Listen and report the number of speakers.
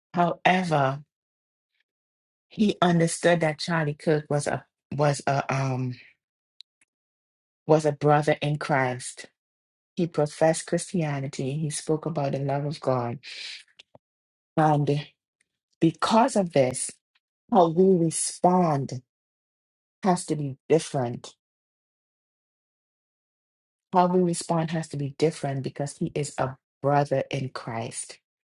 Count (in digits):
1